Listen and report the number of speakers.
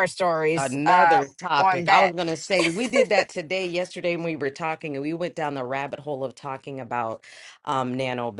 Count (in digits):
2